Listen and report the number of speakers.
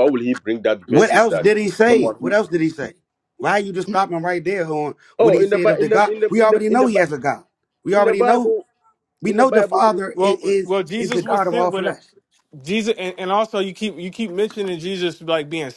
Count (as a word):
three